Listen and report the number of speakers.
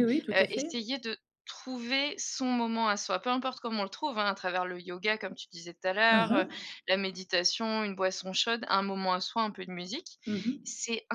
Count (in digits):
2